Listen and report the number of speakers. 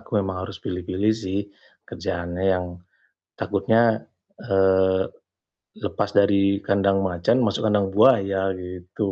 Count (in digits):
1